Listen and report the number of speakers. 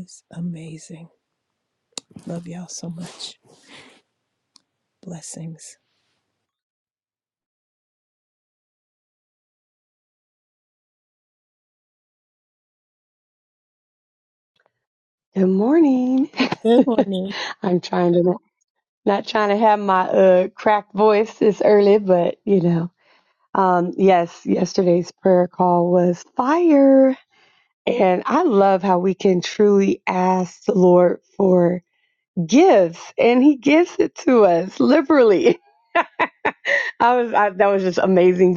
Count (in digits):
2